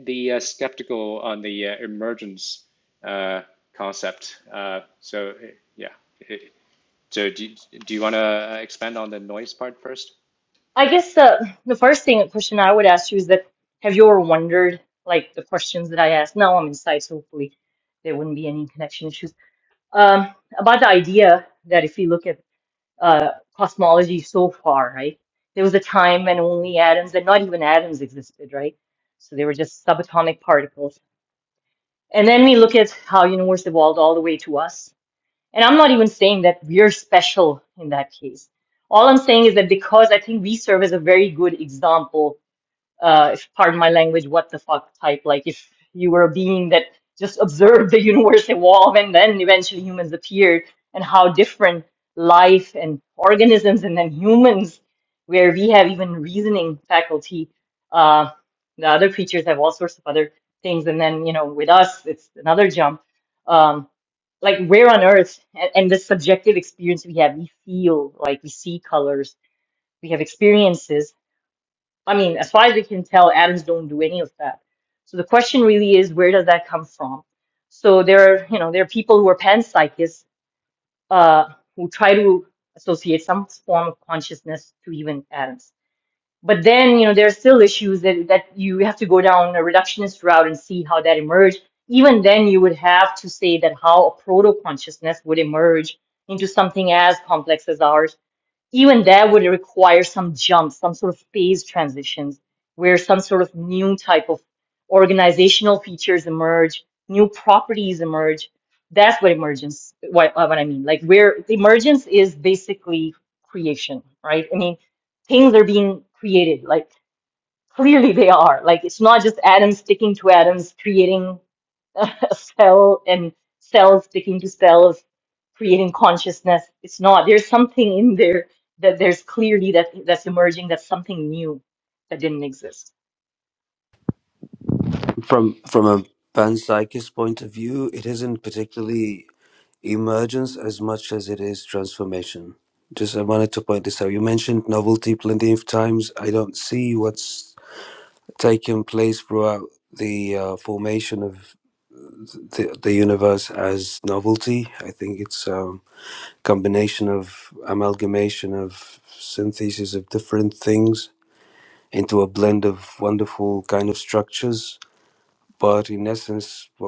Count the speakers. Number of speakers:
3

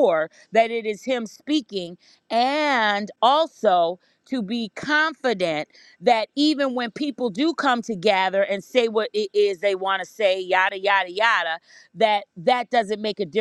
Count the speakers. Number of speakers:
1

